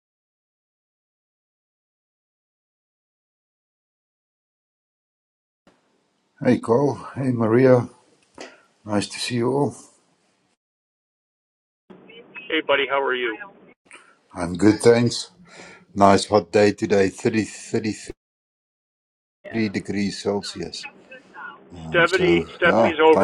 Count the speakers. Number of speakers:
2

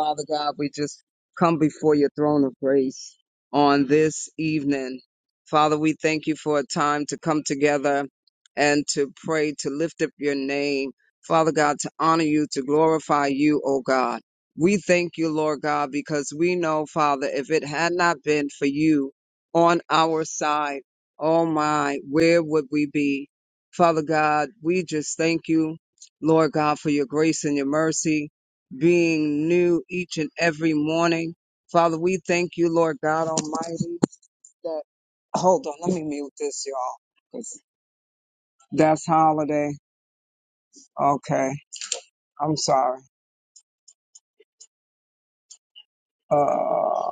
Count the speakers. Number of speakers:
1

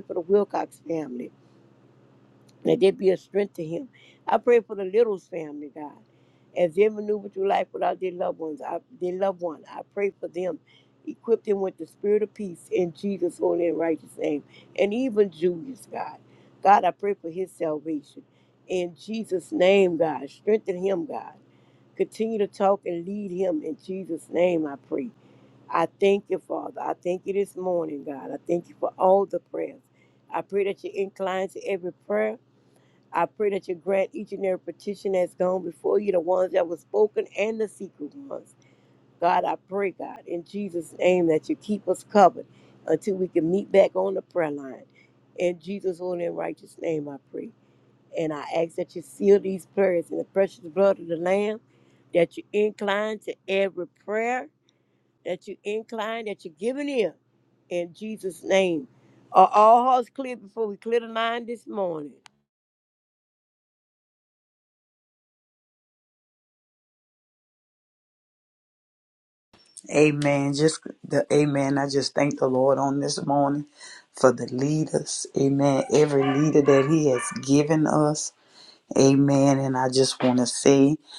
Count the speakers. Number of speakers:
2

